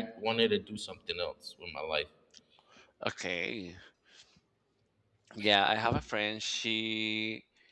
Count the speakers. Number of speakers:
2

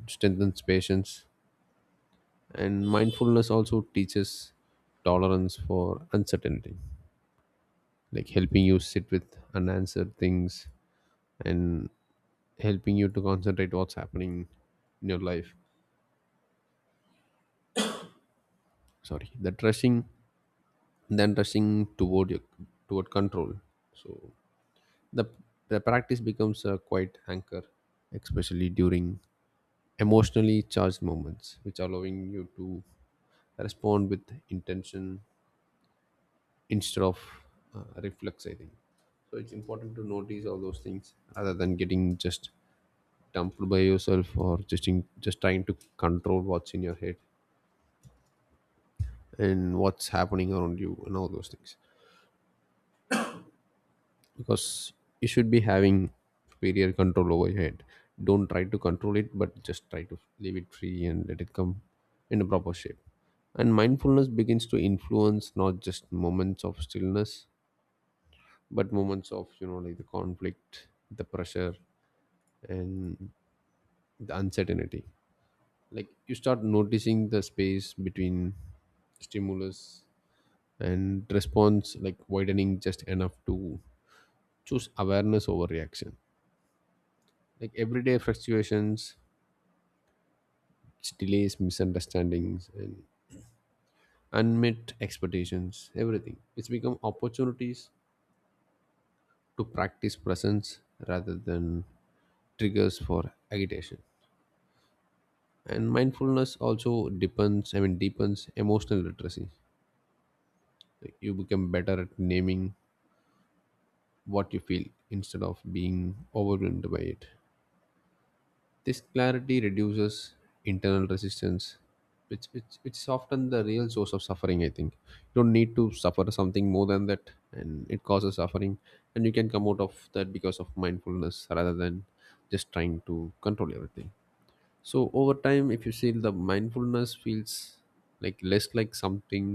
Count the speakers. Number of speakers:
1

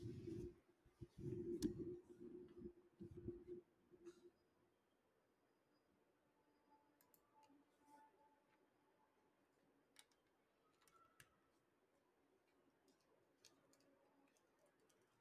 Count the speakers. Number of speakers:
0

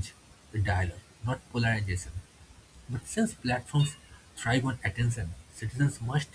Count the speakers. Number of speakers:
1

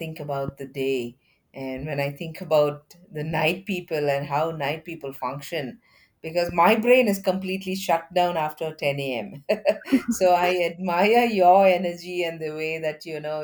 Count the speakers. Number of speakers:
1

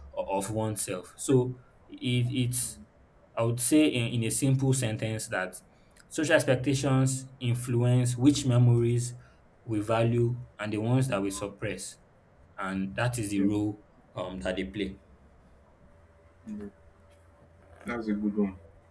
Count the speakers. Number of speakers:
2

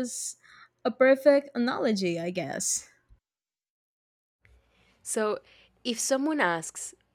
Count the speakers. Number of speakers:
2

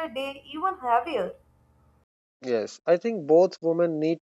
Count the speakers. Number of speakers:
2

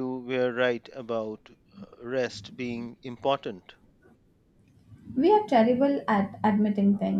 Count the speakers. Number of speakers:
2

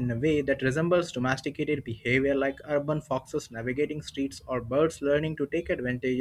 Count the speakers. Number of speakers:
1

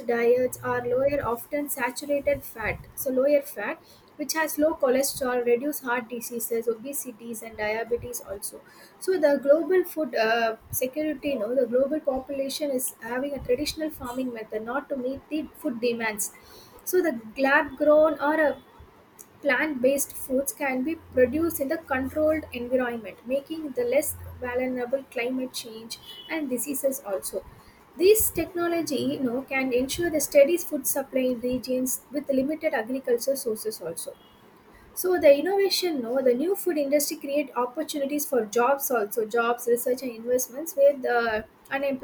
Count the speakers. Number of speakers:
1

